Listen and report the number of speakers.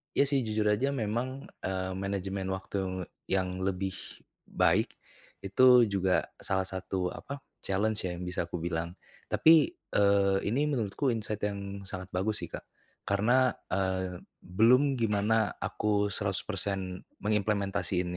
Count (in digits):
1